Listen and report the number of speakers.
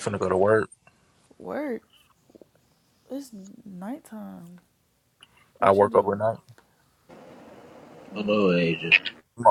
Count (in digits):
3